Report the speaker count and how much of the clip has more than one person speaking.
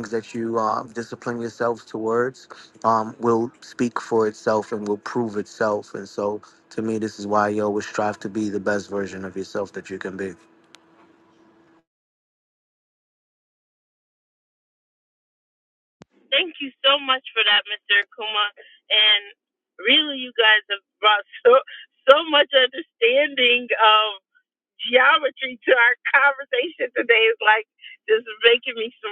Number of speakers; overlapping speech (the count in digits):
2, no overlap